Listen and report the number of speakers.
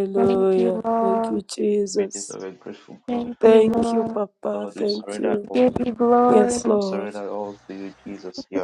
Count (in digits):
3